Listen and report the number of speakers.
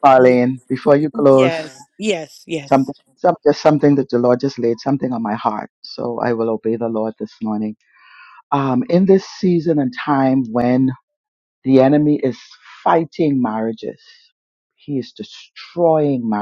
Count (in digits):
2